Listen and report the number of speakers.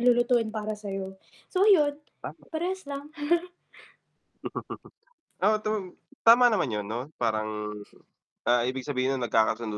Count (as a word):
two